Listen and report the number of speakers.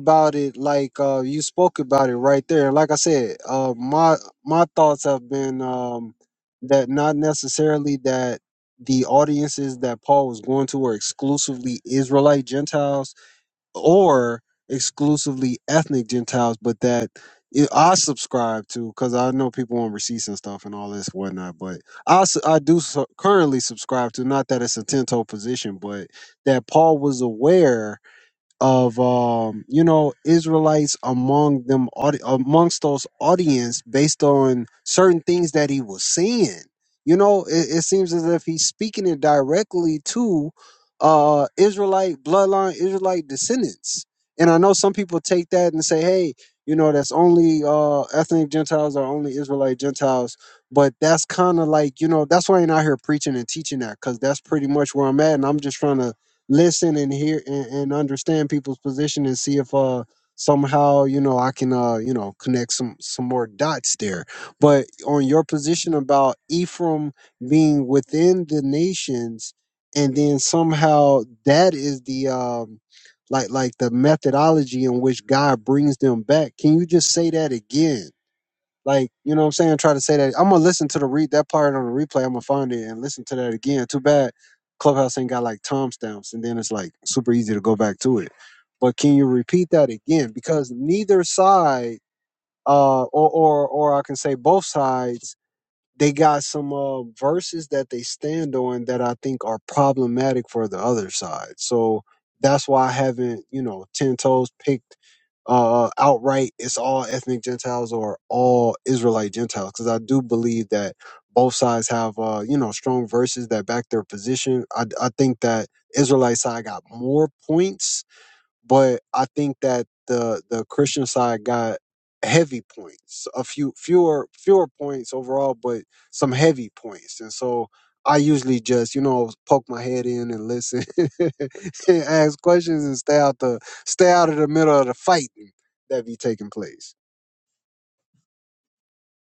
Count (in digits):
1